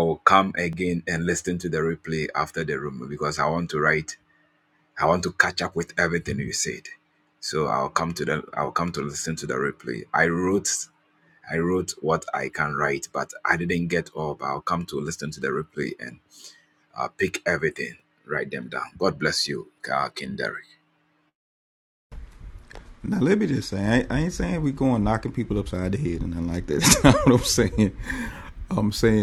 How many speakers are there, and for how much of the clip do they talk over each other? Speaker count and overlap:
two, no overlap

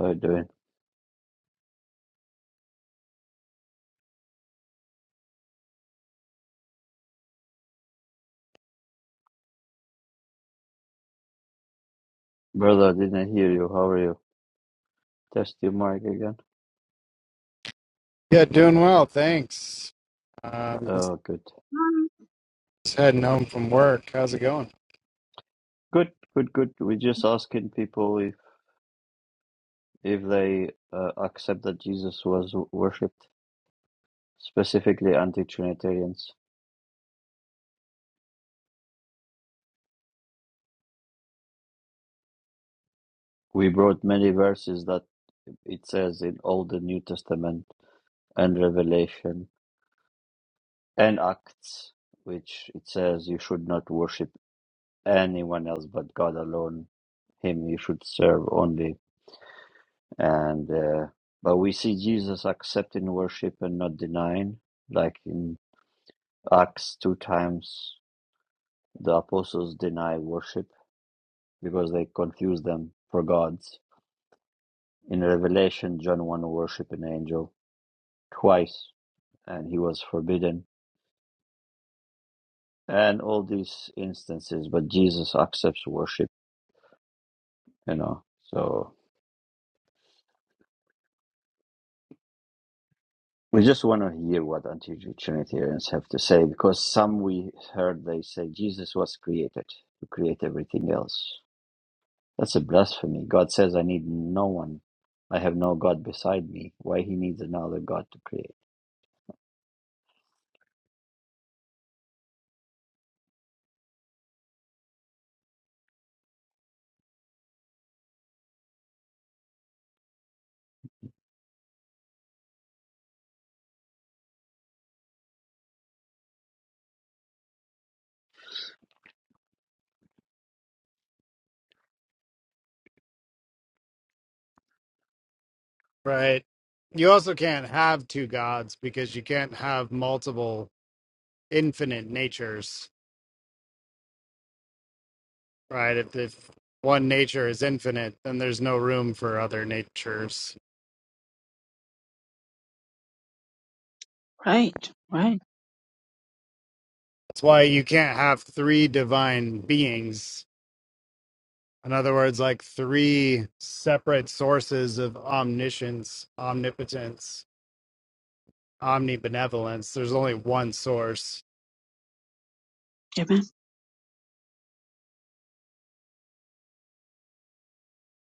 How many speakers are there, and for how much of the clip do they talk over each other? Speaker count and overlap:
three, under 1%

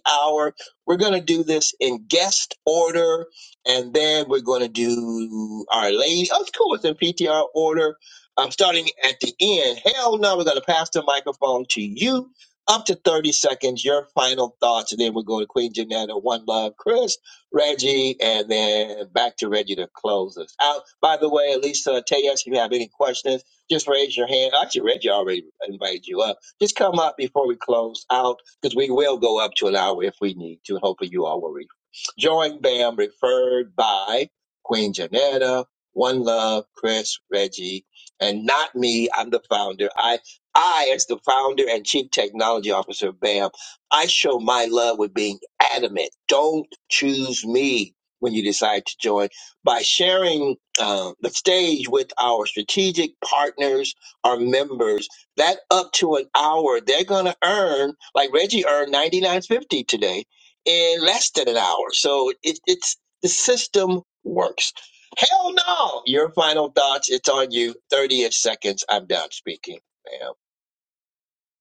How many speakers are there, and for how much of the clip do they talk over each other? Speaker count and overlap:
one, no overlap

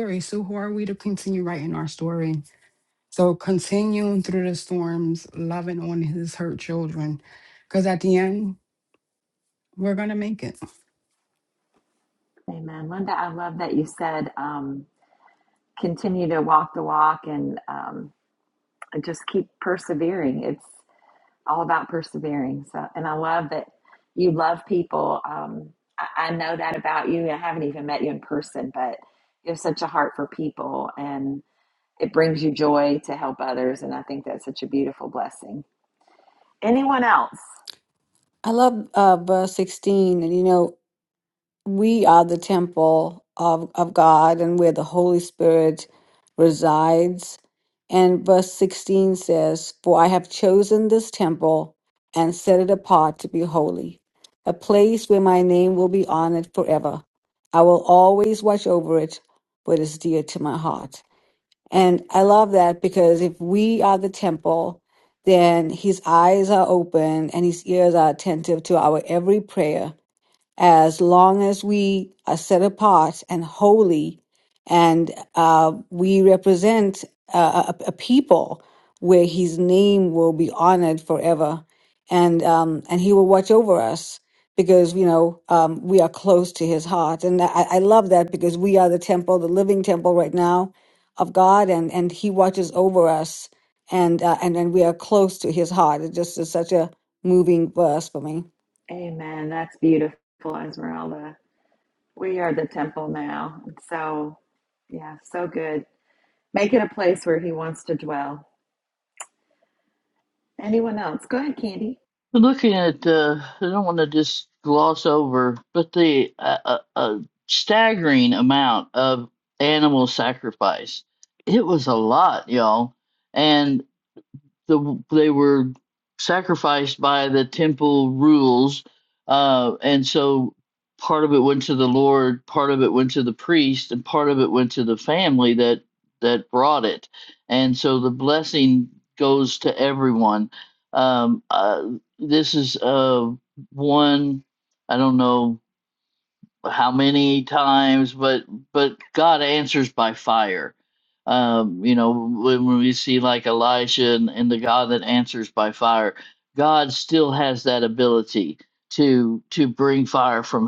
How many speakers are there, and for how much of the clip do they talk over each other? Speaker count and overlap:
four, no overlap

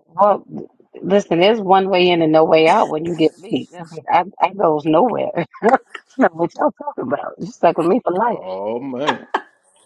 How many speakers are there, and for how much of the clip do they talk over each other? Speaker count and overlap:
two, about 2%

